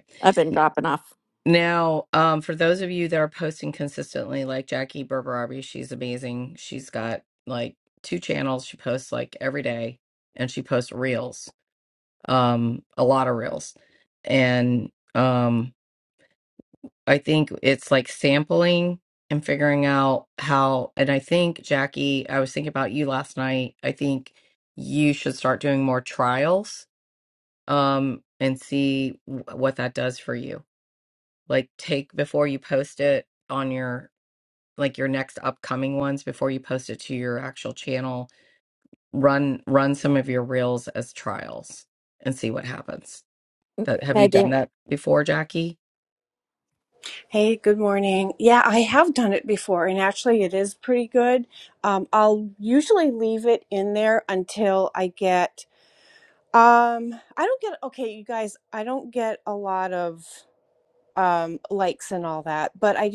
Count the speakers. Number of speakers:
3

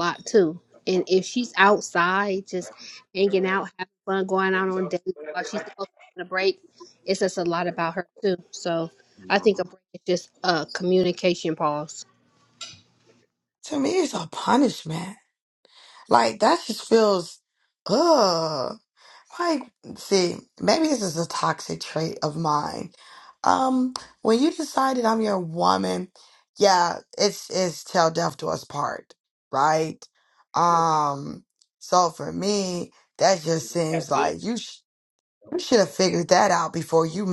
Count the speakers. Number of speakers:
2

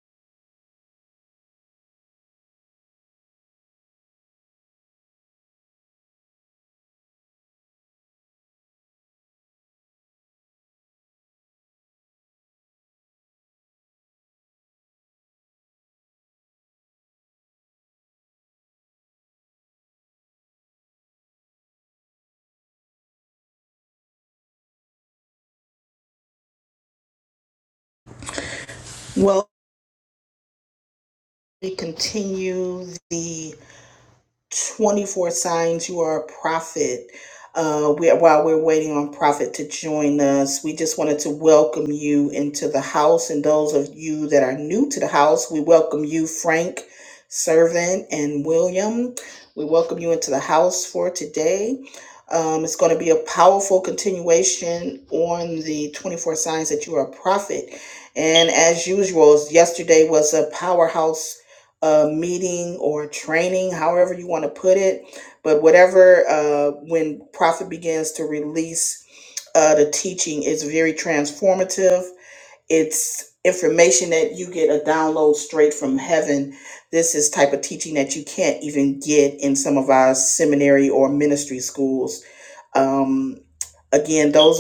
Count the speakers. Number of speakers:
1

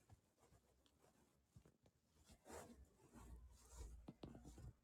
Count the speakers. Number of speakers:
0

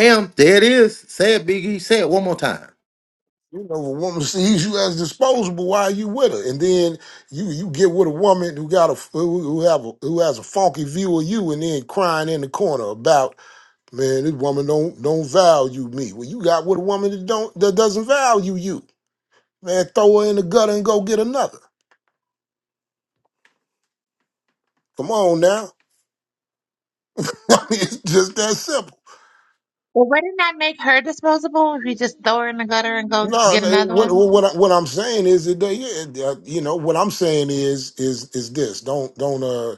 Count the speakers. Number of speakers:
3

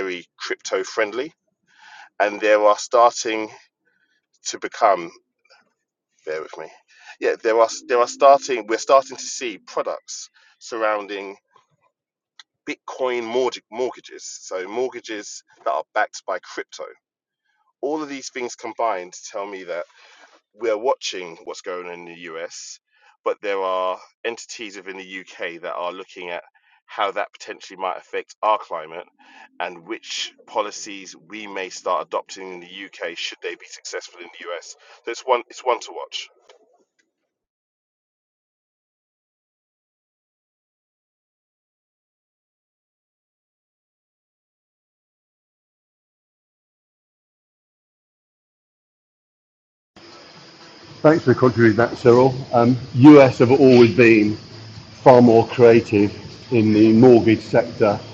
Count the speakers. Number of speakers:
2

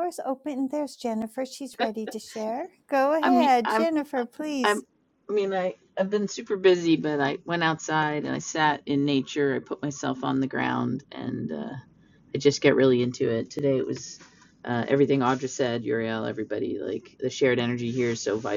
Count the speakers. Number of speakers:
2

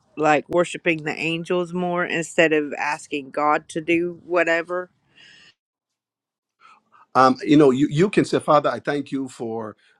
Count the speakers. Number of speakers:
2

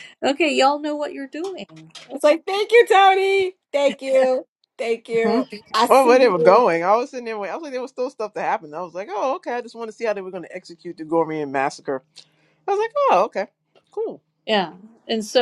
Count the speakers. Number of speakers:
3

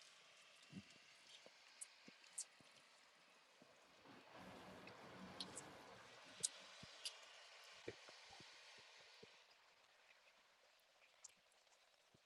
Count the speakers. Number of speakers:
0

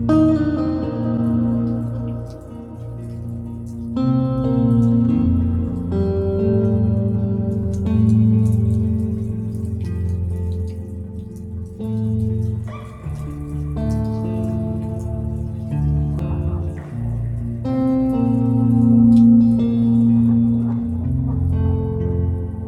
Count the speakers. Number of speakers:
0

